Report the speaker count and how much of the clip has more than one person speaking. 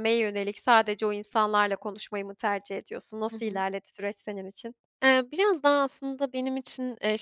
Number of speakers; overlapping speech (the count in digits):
2, about 4%